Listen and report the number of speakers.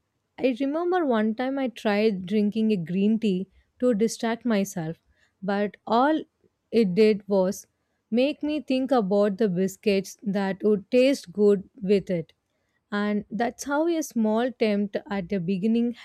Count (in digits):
1